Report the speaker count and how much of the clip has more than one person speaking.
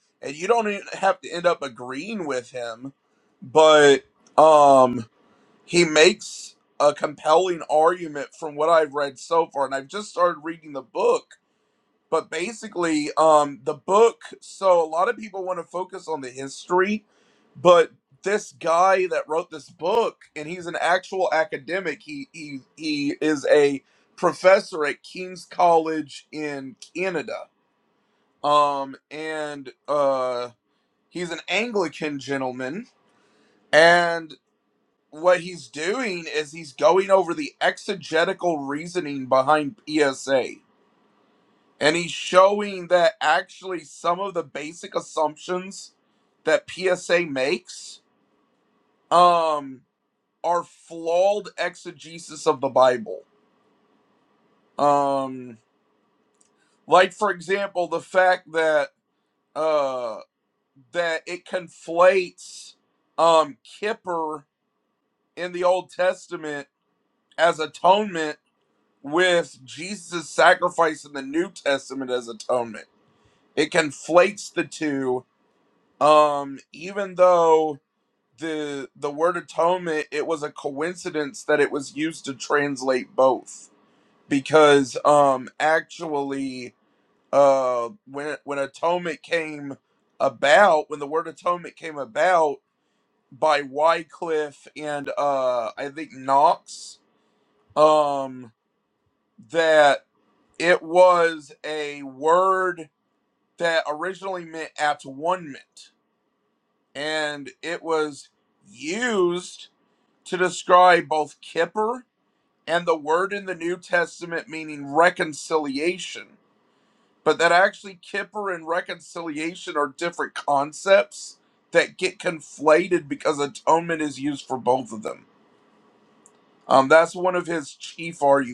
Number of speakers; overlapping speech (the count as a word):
one, no overlap